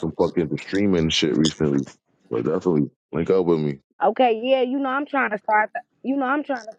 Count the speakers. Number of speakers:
2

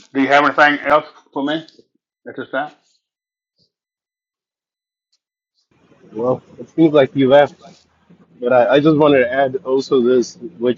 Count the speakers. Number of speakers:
2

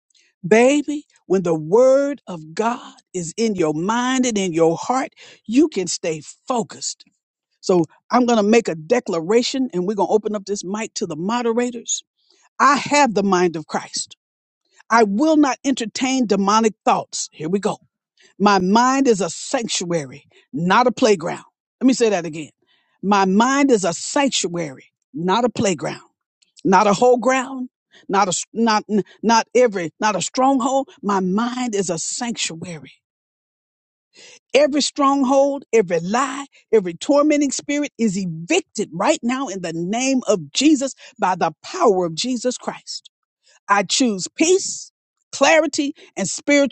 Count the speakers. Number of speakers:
1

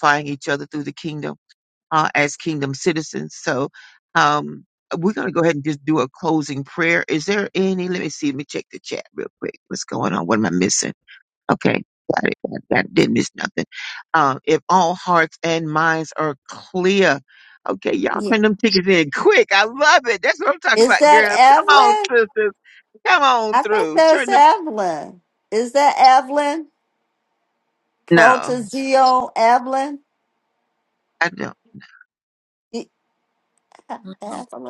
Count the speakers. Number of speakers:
2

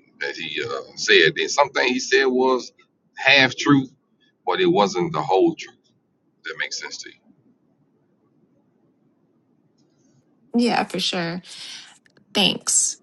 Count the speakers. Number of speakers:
2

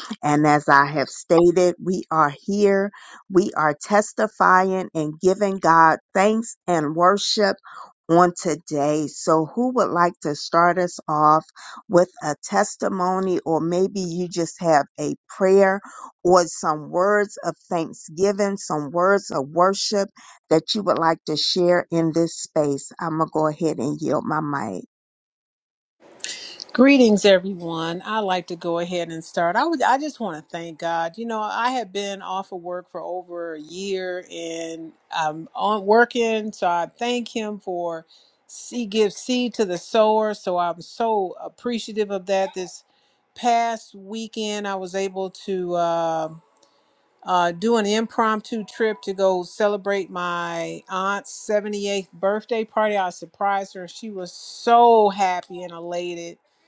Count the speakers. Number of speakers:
2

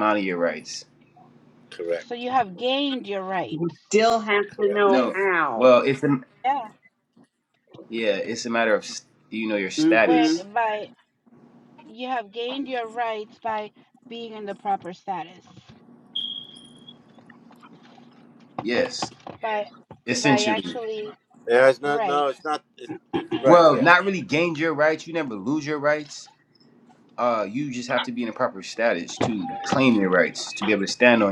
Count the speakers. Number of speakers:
4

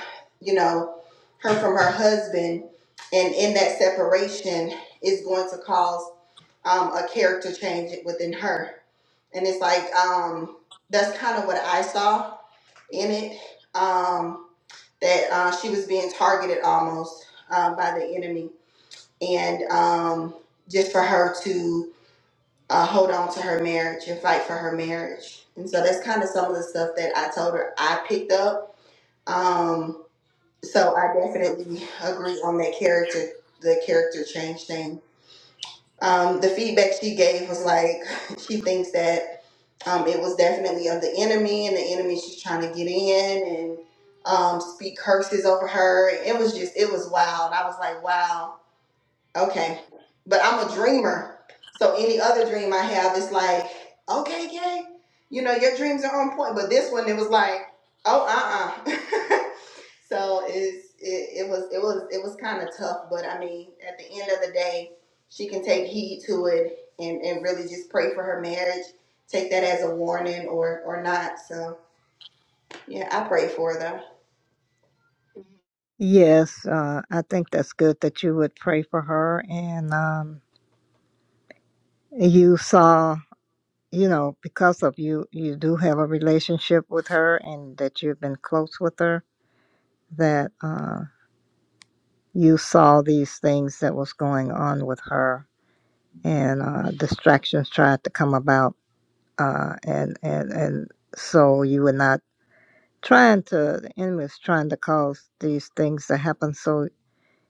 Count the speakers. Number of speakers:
2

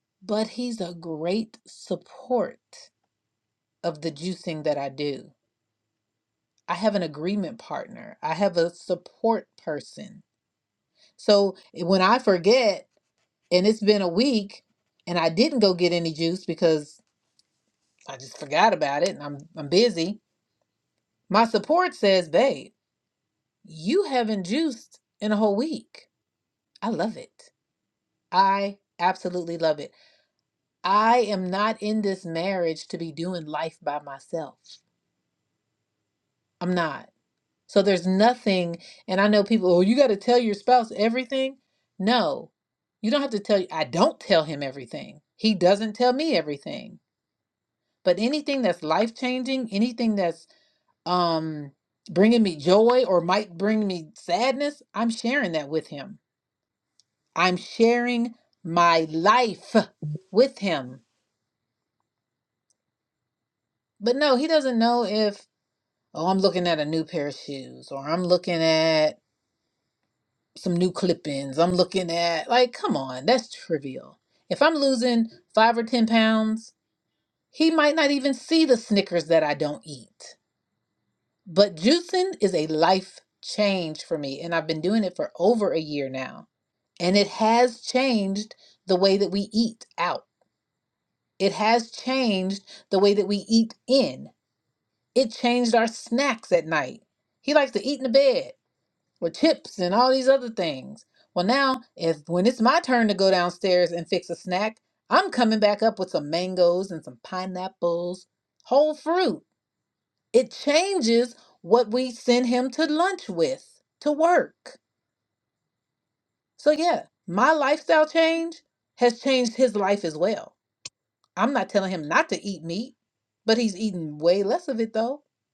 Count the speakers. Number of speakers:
1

